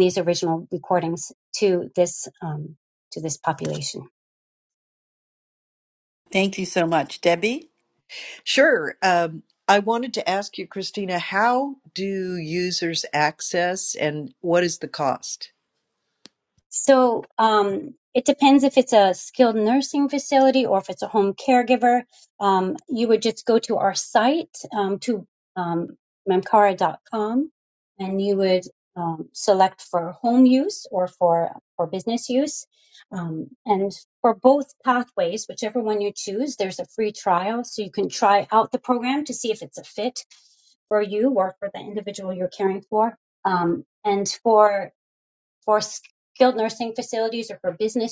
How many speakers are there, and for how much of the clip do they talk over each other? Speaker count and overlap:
3, no overlap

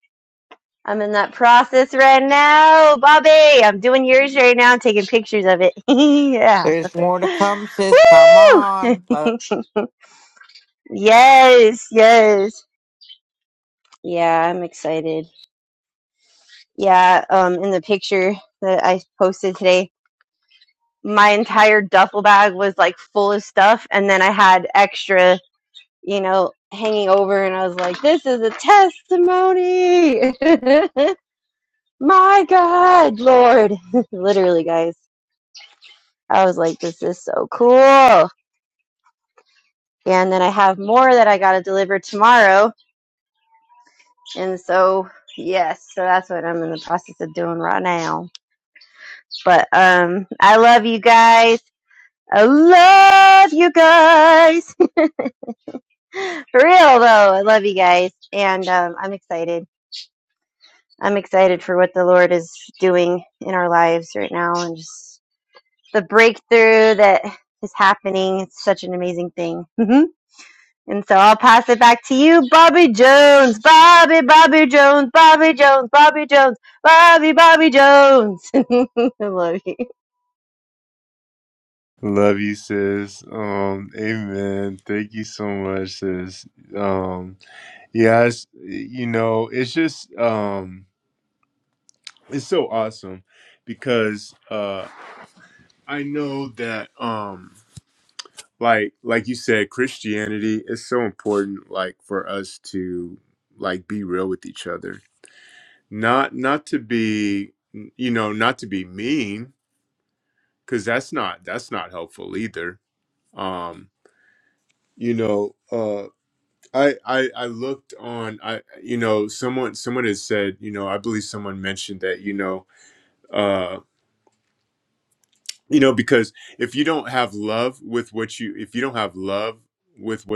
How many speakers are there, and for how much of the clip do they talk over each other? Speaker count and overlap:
3, under 1%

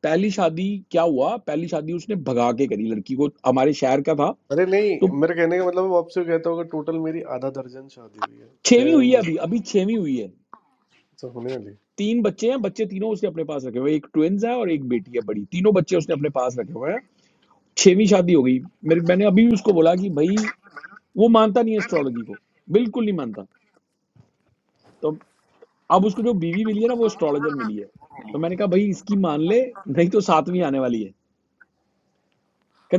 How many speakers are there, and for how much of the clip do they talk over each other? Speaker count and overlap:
2, about 2%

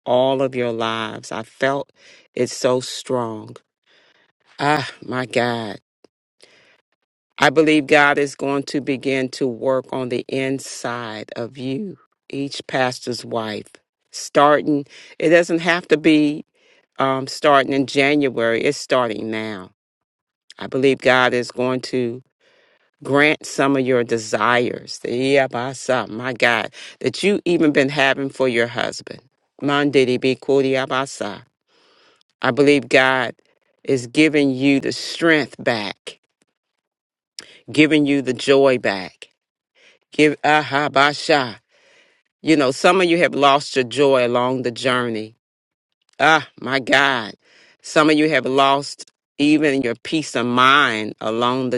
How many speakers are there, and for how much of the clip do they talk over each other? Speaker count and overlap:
1, no overlap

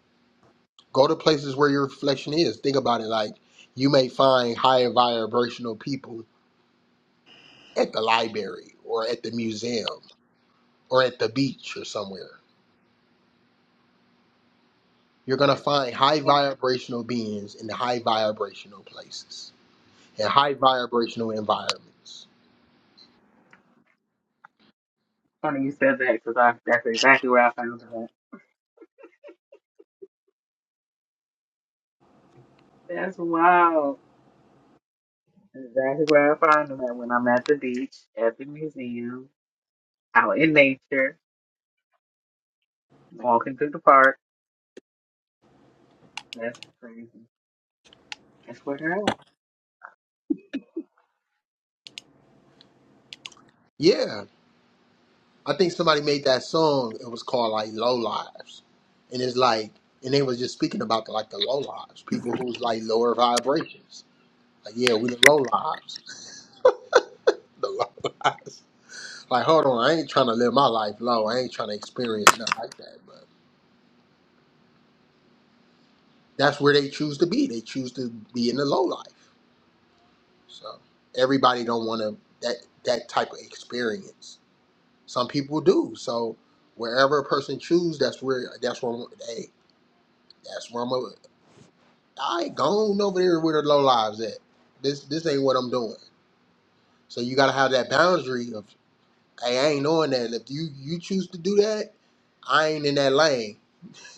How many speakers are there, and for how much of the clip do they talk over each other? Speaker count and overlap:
2, no overlap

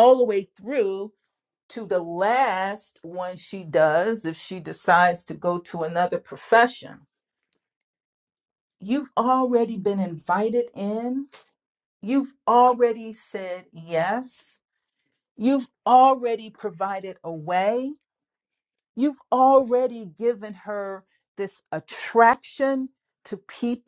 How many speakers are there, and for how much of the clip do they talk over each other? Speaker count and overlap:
1, no overlap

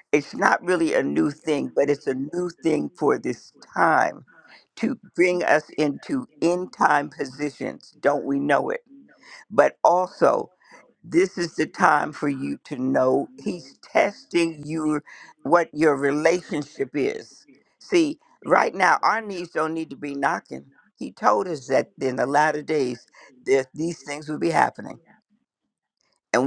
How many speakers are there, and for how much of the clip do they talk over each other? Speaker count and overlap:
1, no overlap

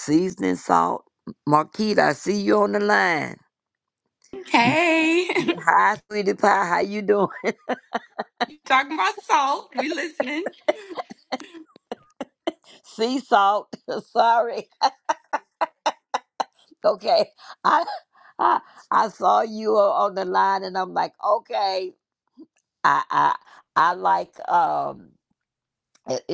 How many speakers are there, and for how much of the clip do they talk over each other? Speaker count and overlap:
2, no overlap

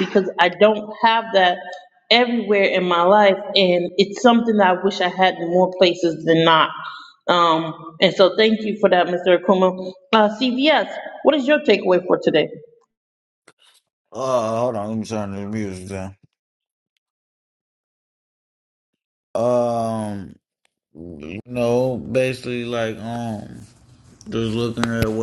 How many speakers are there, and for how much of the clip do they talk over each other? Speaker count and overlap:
2, no overlap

